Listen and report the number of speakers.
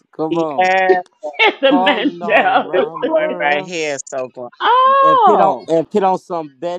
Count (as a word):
three